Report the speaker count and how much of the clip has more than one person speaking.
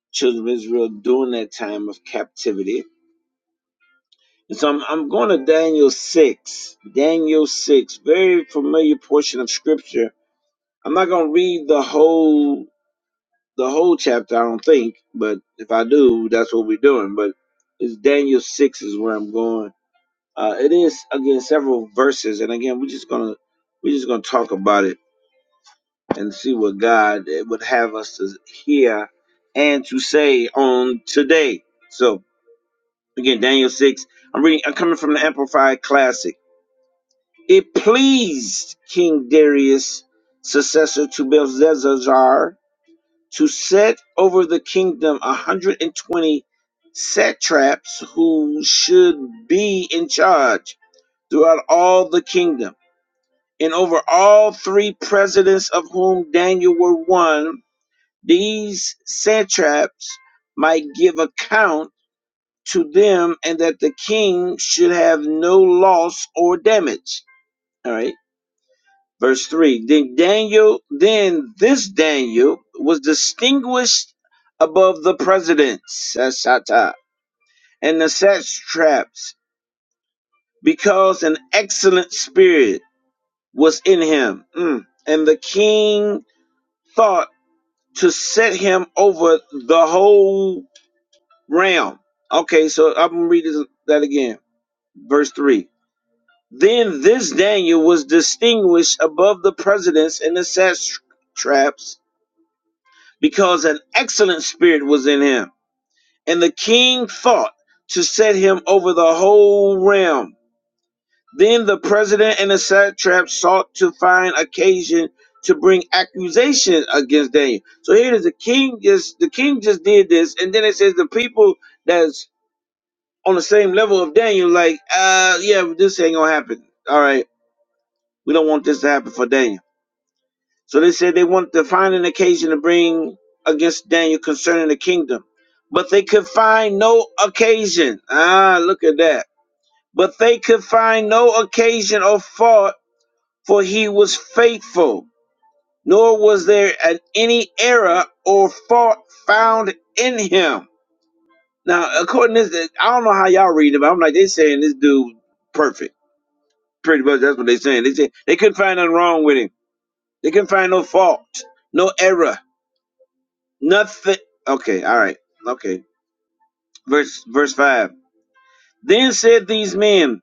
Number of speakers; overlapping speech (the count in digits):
1, no overlap